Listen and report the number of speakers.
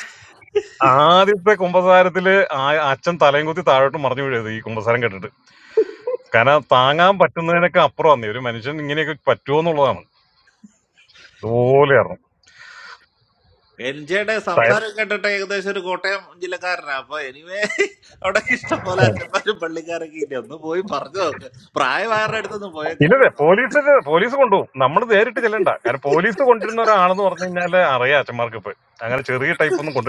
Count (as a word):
two